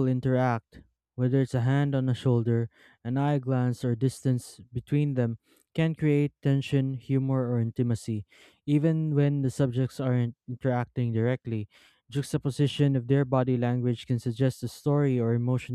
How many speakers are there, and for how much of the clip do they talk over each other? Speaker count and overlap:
1, no overlap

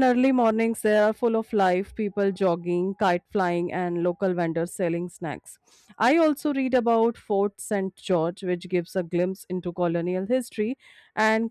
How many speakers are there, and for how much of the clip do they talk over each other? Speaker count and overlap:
1, no overlap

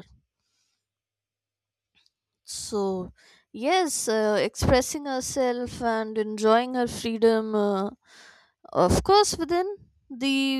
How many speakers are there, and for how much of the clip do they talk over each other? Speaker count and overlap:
1, no overlap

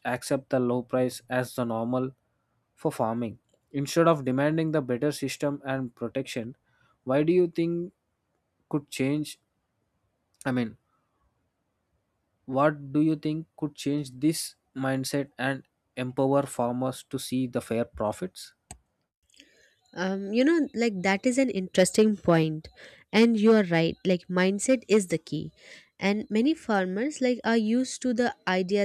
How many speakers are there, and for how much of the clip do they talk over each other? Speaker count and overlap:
2, no overlap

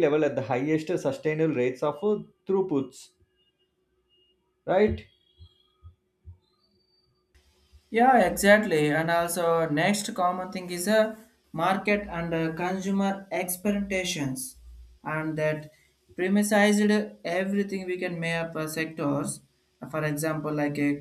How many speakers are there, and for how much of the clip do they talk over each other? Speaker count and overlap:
2, no overlap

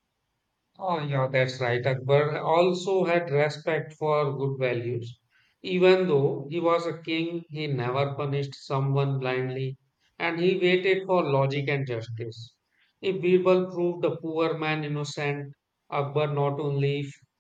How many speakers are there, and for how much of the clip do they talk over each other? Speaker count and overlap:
1, no overlap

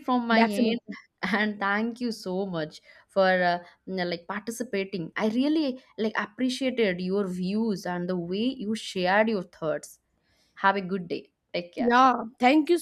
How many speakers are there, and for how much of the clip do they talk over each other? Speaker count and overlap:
2, about 5%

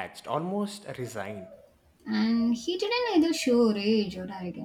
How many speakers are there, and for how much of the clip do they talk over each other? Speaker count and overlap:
2, no overlap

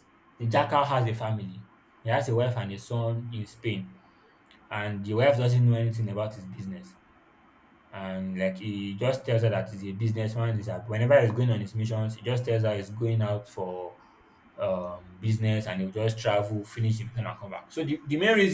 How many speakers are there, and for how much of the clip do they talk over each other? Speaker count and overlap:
1, no overlap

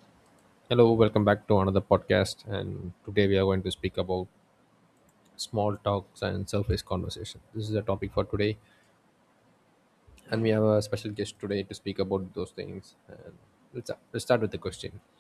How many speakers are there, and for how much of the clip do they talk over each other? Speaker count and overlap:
1, no overlap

